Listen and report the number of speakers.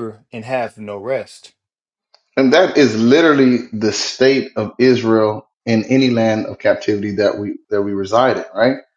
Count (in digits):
2